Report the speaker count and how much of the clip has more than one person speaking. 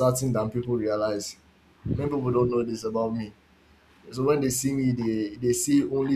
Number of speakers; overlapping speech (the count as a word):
one, no overlap